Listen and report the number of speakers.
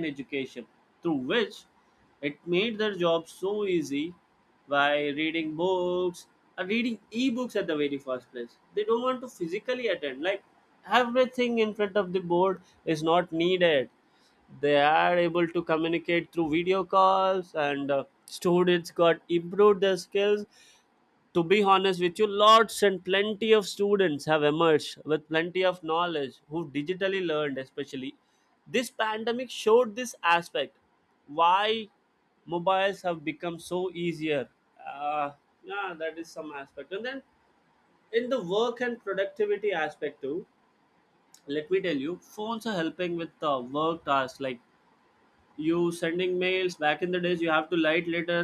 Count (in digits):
1